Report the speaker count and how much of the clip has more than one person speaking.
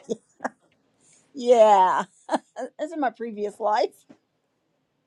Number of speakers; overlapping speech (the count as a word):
one, no overlap